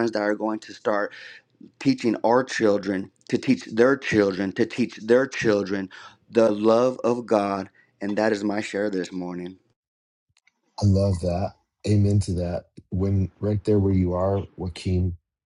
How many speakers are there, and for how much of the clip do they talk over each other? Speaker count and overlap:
2, no overlap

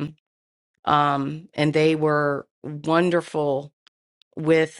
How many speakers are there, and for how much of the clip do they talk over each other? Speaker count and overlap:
1, no overlap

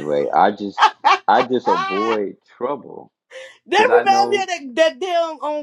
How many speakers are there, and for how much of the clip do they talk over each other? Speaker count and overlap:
2, about 21%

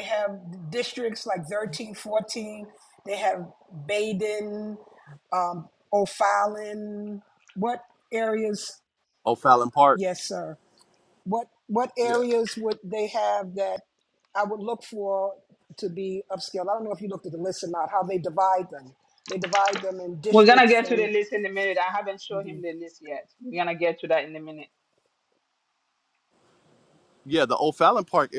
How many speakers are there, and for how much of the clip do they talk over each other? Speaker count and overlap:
3, about 4%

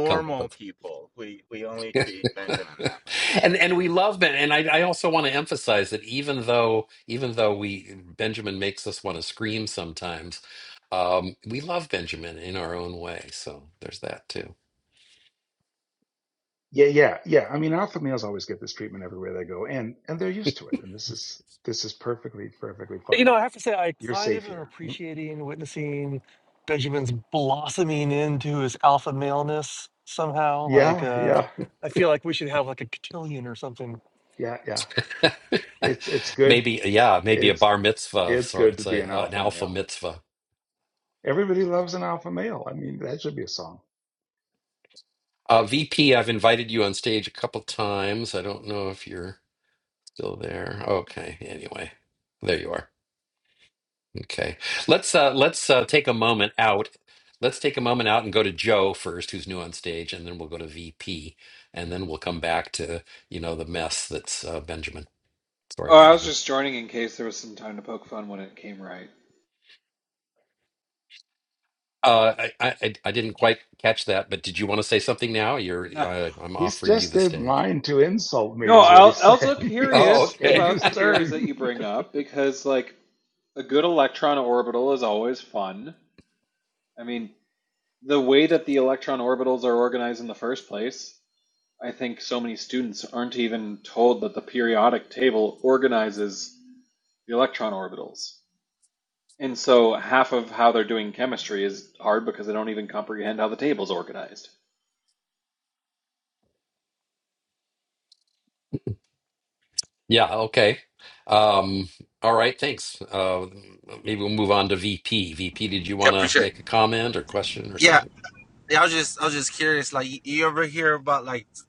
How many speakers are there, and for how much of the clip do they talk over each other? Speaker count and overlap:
6, about 8%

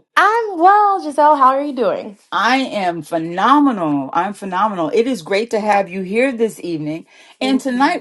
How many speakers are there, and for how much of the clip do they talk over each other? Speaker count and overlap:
2, about 6%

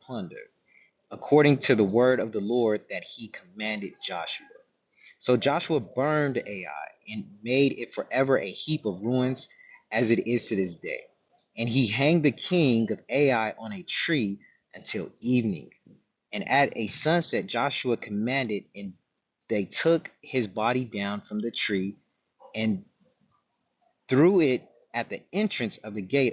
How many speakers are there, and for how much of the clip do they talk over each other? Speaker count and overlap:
1, no overlap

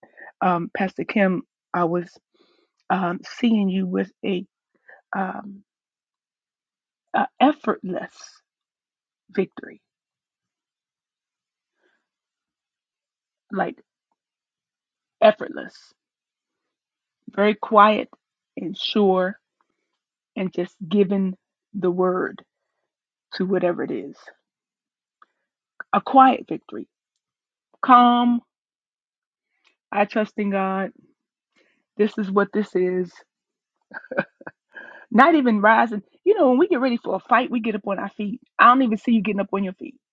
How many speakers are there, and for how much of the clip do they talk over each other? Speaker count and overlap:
1, no overlap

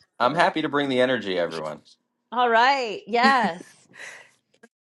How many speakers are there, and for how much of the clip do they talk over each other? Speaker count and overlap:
2, about 6%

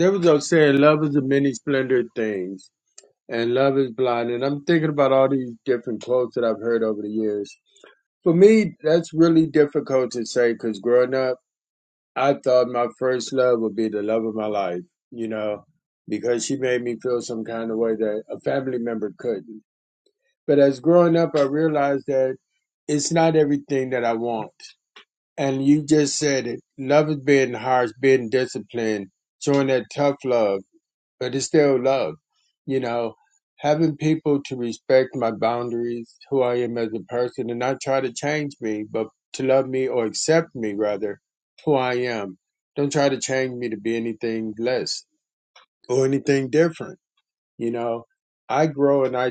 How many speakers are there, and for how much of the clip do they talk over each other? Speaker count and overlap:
1, no overlap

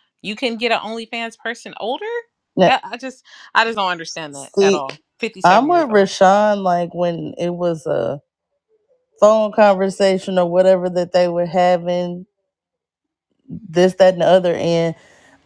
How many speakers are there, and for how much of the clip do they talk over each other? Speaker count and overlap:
2, about 7%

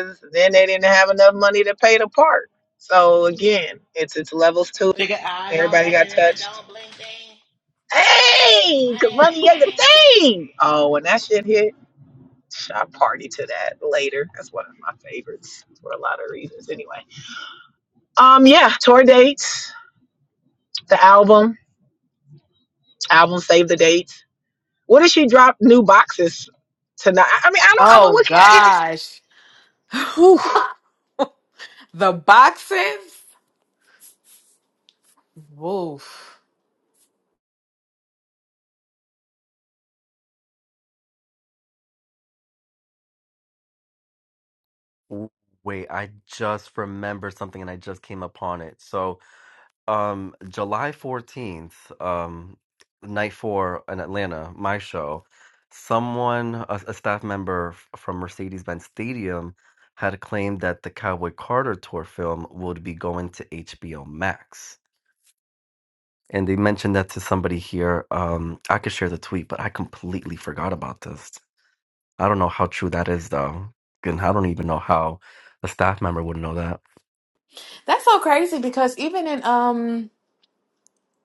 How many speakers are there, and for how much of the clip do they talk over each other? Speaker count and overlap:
4, about 4%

